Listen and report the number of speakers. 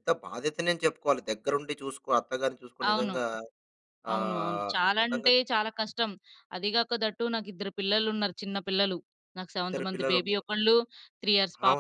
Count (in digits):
2